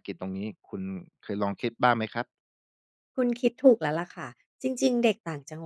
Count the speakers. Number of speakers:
2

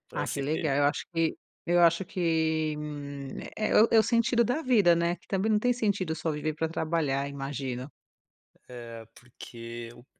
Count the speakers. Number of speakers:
2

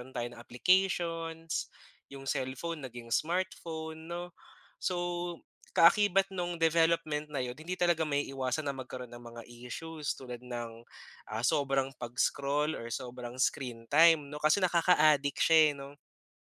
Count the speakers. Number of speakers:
1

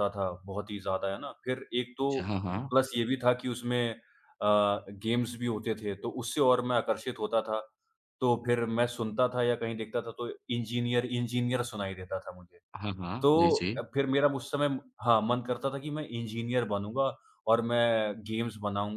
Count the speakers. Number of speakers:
2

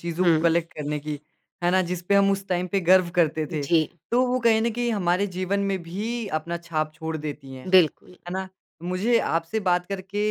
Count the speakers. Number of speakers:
2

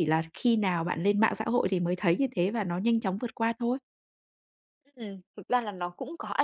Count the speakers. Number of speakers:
2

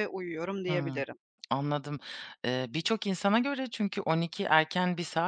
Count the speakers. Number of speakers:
2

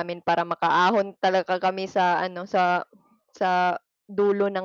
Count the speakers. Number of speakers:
1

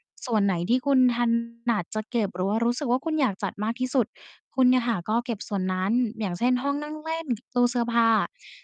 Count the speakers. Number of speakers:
1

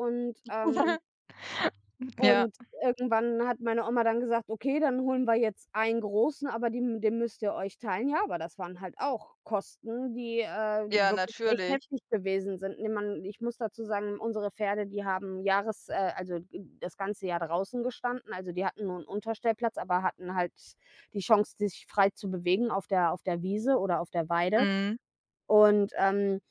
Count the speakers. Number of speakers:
2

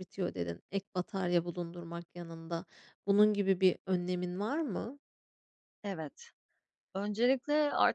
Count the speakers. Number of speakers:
2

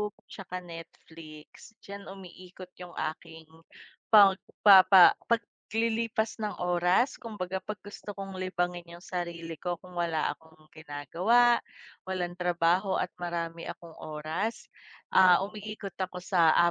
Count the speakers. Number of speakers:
1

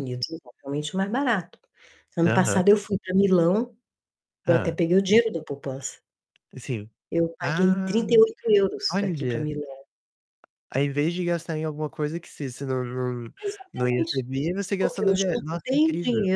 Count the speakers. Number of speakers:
2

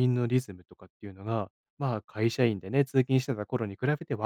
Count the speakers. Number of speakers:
1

